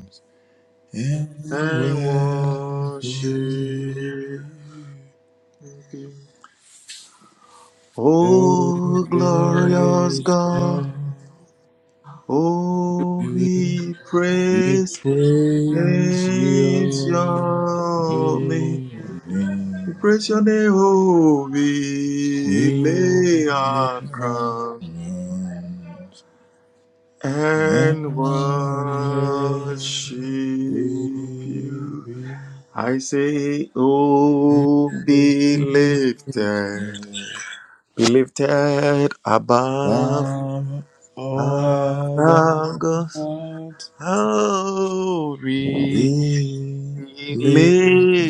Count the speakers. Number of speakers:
two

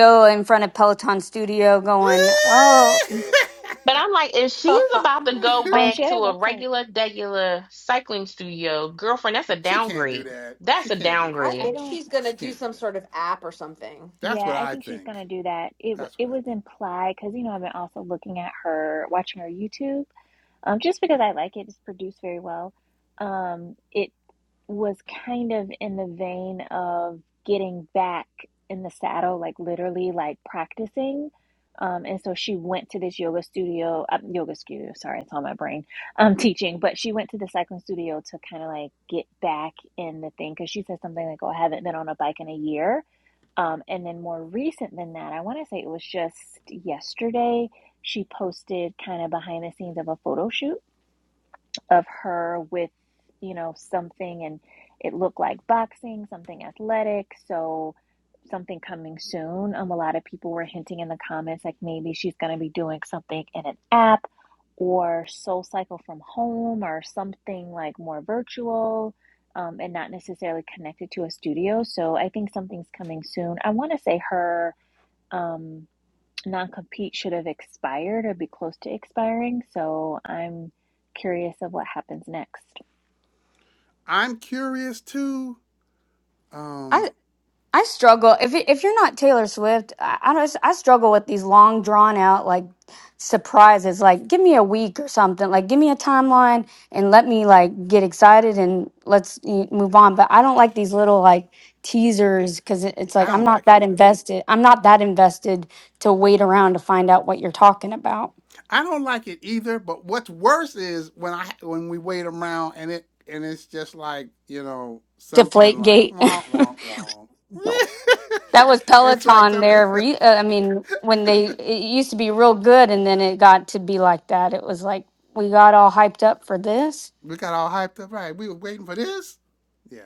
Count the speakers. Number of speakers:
five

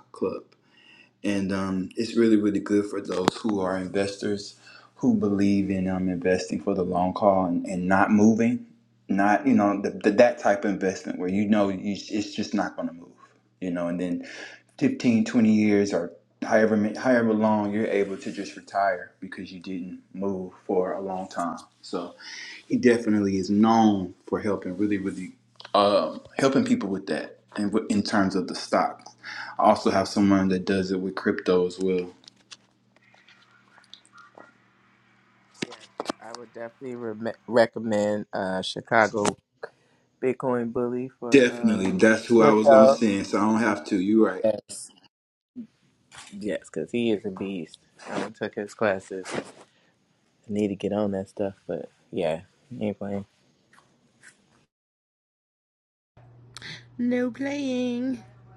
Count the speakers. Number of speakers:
three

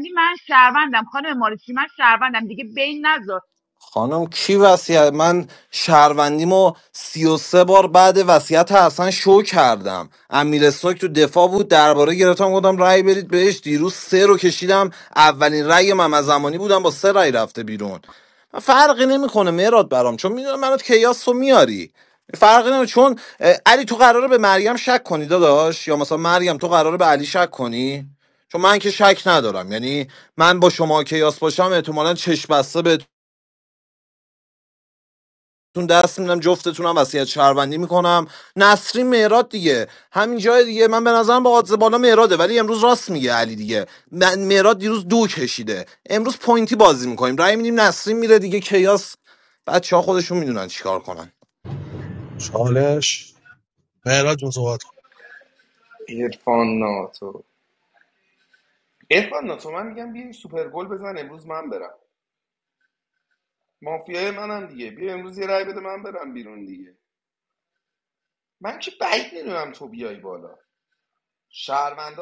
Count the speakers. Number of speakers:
four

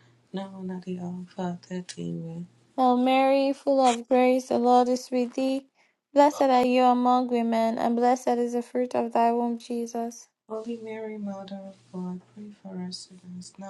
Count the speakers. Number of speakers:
two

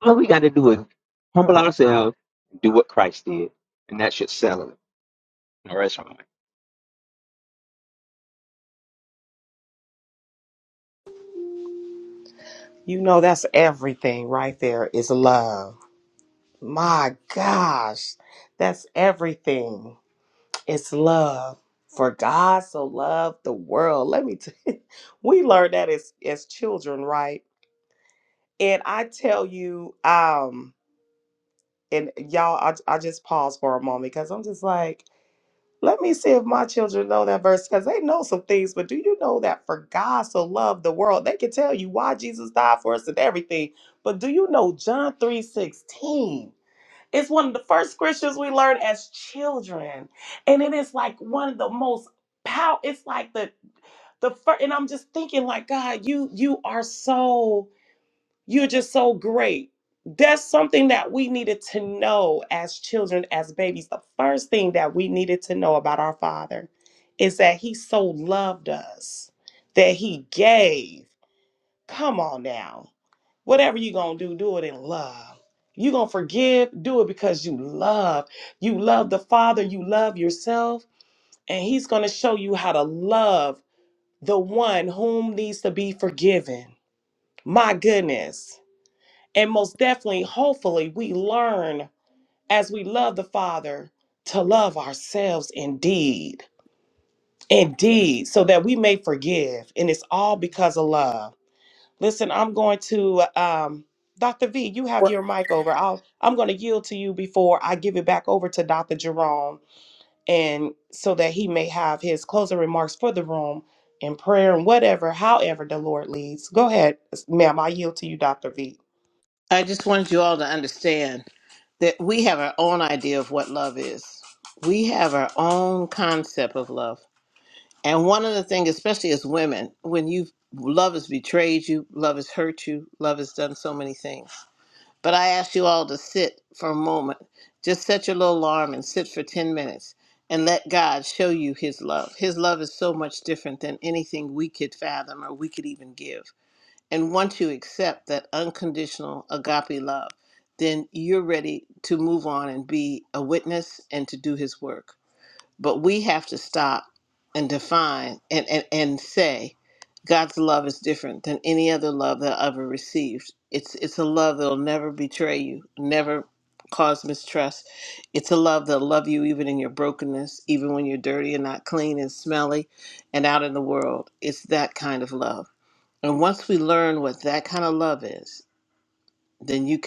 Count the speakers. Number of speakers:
three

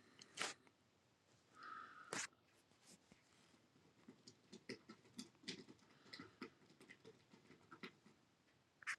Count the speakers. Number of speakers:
zero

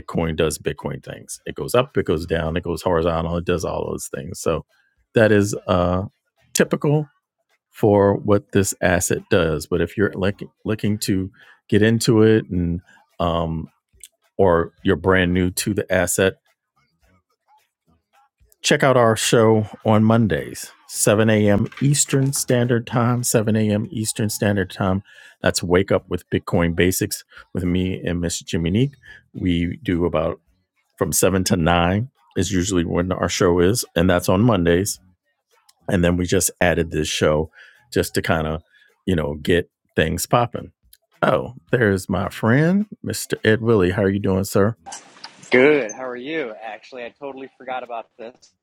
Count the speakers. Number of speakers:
two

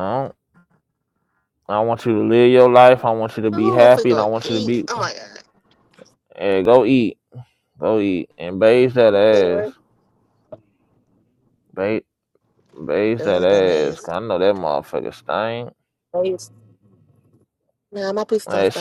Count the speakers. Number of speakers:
two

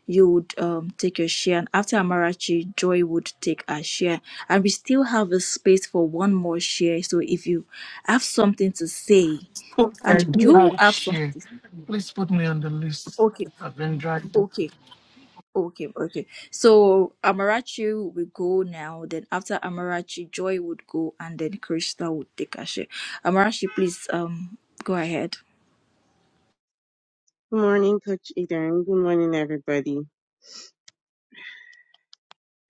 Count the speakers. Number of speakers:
three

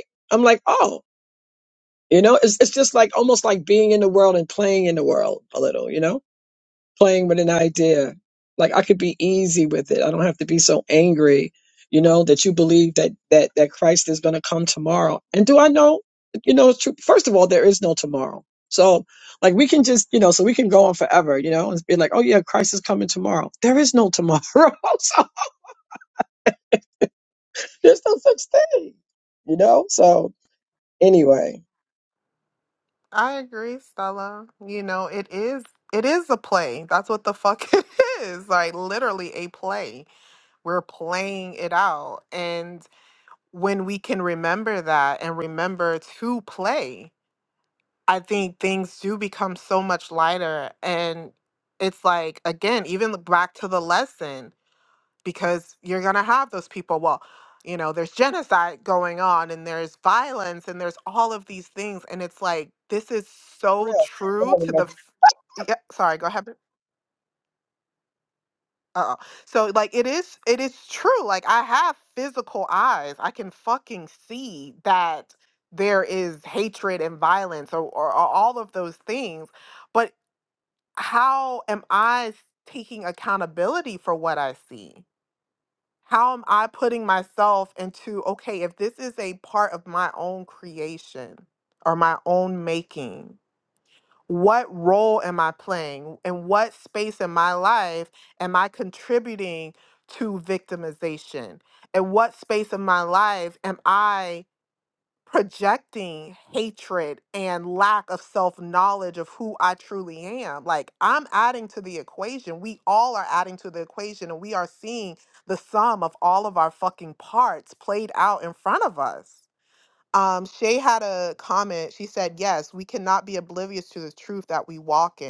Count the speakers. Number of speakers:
two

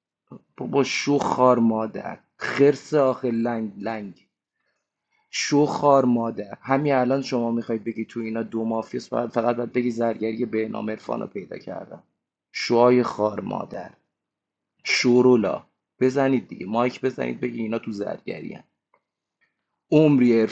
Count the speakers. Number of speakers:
one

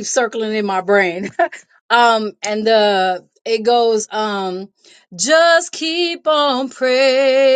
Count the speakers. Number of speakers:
one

